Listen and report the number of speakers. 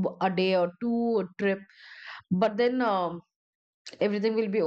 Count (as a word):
one